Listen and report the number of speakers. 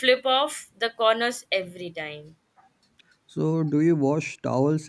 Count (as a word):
two